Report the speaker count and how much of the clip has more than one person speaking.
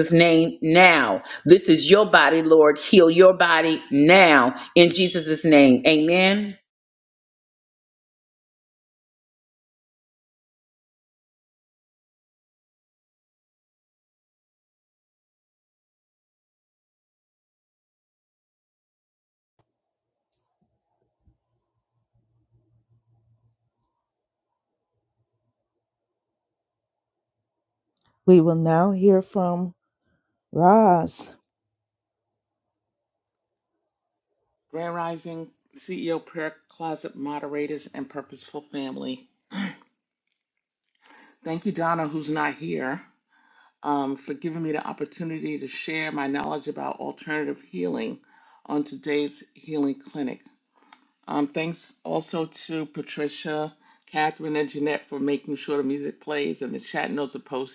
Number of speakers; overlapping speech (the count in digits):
3, no overlap